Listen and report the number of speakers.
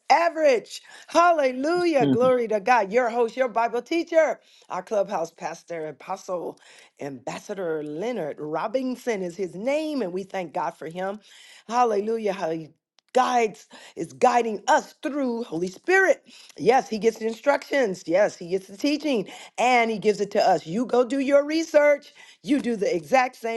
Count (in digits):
1